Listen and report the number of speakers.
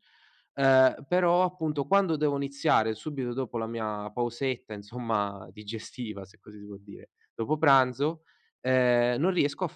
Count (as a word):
one